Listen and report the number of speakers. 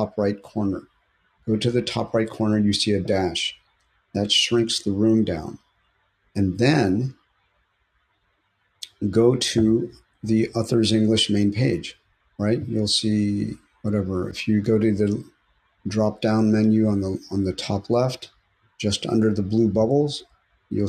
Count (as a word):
one